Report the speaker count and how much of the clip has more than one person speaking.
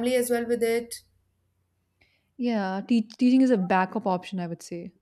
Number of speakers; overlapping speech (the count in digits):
2, no overlap